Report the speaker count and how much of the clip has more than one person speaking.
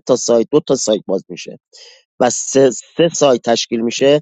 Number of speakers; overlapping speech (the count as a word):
one, no overlap